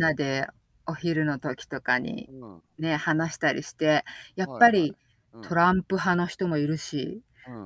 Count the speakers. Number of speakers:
two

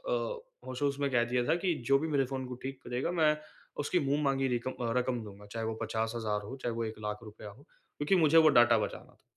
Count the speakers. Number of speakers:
one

